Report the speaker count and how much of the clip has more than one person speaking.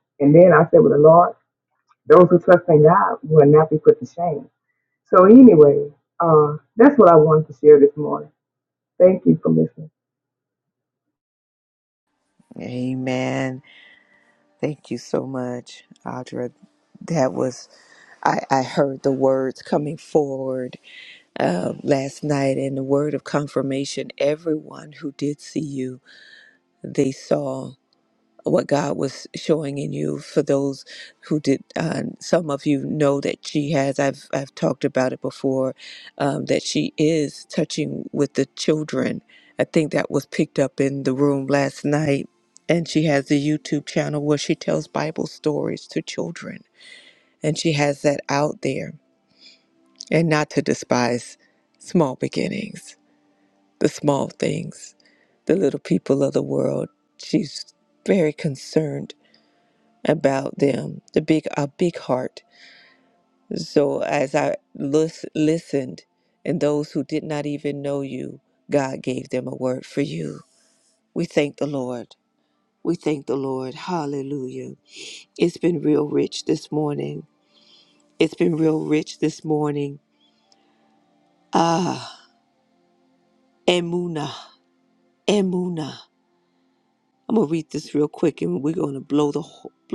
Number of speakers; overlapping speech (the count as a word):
two, no overlap